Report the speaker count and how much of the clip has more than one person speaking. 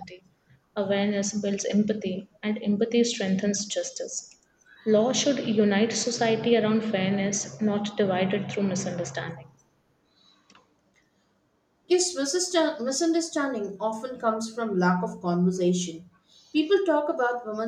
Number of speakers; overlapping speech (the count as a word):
two, no overlap